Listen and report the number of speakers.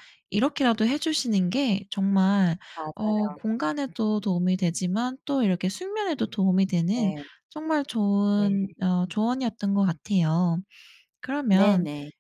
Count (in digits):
2